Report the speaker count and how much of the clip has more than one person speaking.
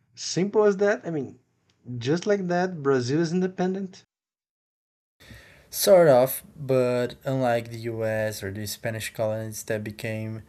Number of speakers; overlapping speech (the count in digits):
2, no overlap